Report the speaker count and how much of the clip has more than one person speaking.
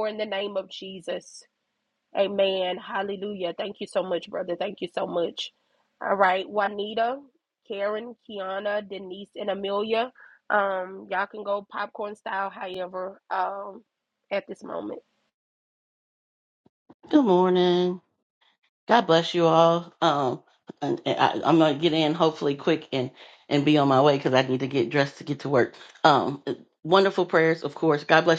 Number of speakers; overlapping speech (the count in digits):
2, no overlap